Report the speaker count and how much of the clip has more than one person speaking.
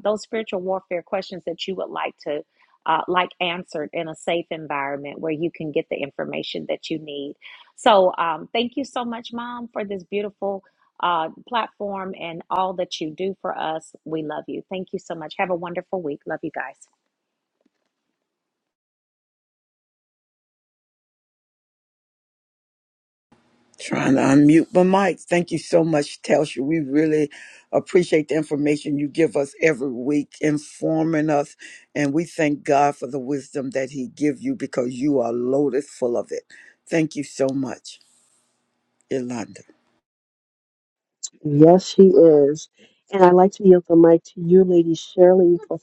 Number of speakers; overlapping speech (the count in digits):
3, no overlap